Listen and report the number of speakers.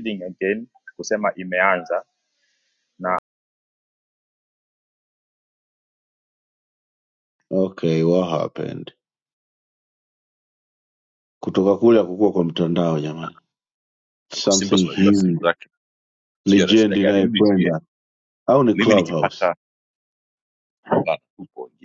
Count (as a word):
three